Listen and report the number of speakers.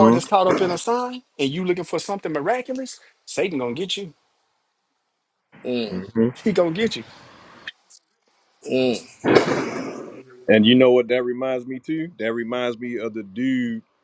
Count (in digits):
3